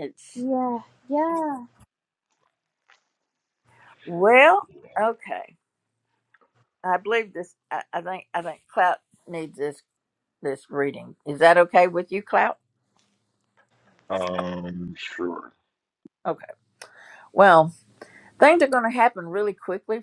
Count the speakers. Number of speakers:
3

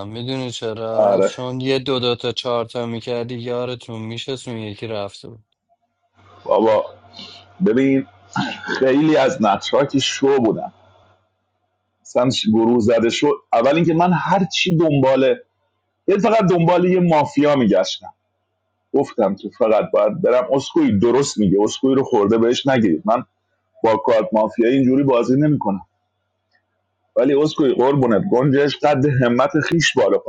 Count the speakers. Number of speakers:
2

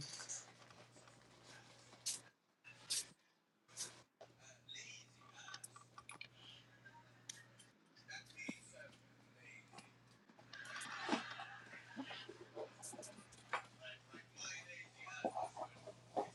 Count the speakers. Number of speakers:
0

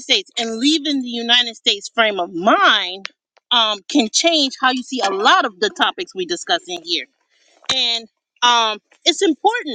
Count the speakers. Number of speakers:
1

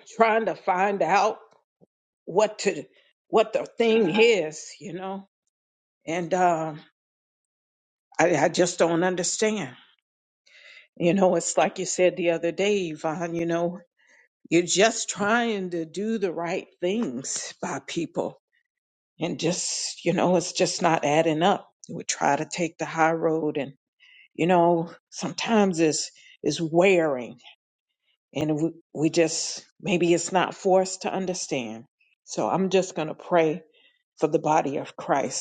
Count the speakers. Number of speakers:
1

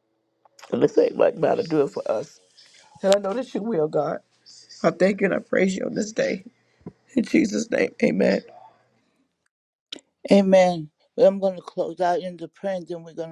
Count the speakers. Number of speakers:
2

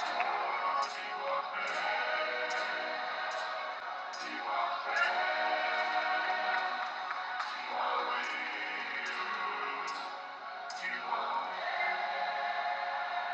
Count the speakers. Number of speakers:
0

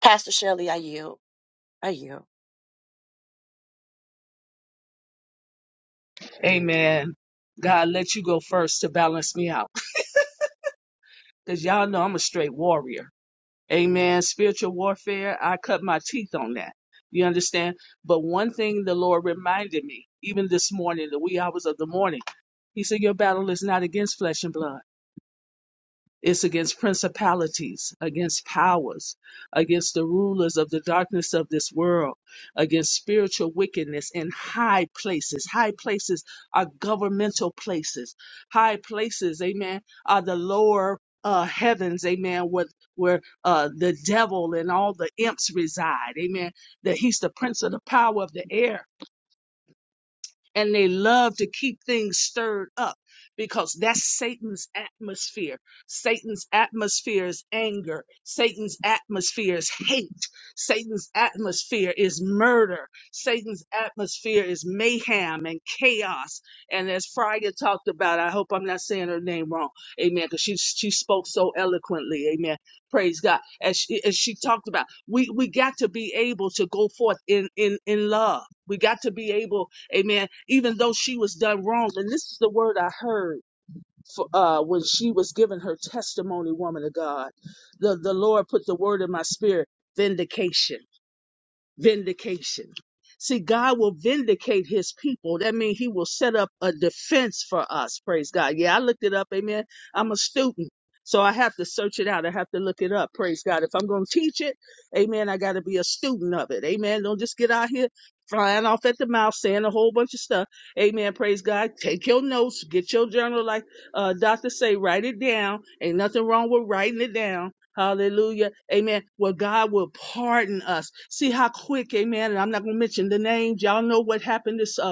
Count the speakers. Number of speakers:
2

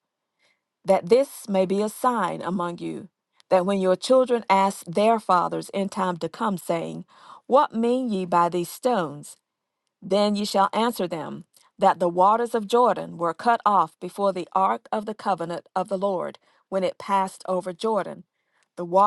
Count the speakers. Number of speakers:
1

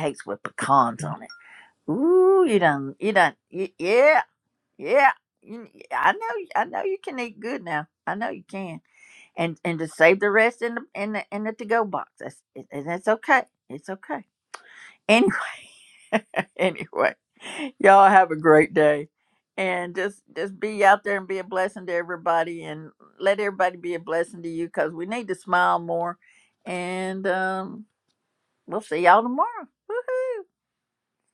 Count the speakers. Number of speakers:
1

